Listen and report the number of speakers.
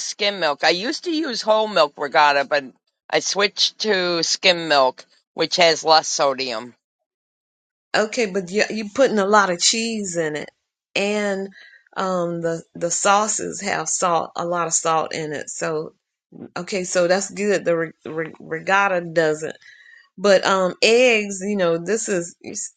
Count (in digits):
2